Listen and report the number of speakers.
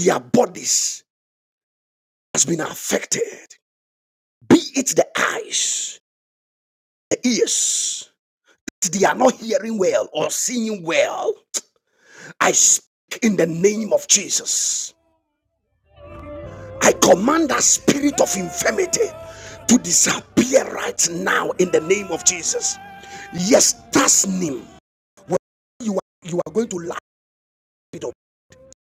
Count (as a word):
one